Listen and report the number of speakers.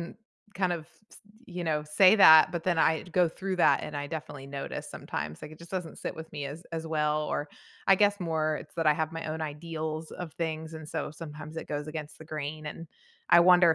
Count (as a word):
one